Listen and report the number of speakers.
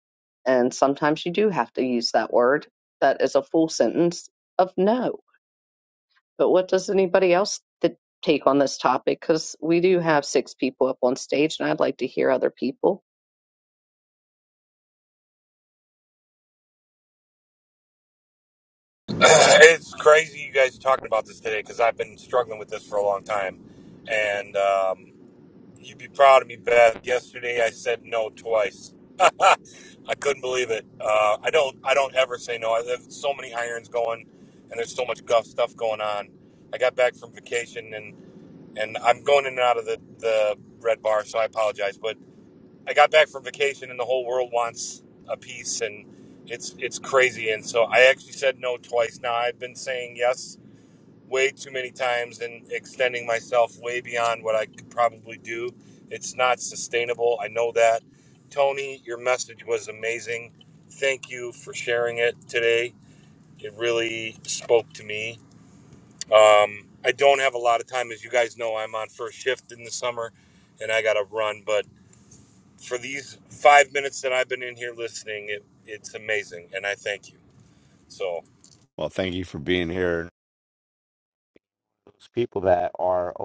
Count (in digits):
3